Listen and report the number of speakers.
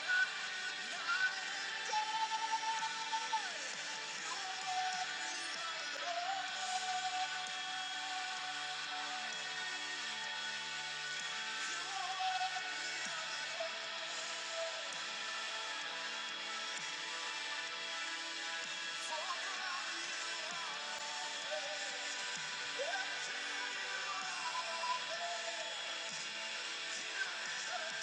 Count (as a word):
zero